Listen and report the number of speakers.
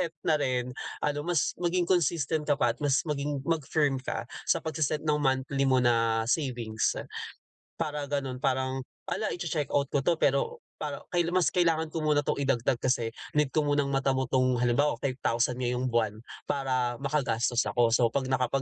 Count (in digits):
1